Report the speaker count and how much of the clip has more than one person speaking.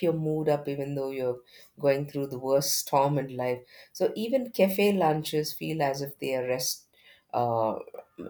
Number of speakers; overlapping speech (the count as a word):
one, no overlap